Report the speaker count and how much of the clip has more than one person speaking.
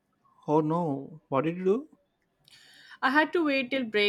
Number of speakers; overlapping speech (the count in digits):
2, no overlap